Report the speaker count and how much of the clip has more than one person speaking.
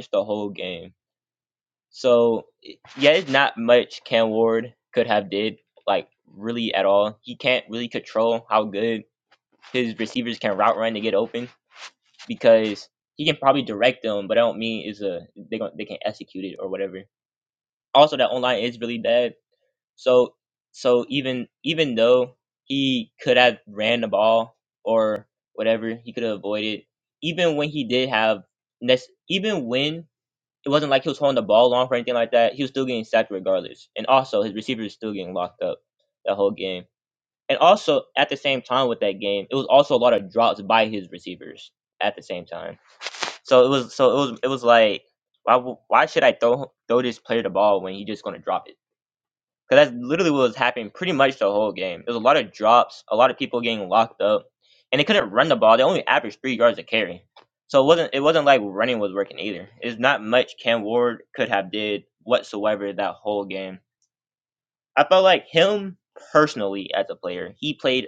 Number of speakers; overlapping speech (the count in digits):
1, no overlap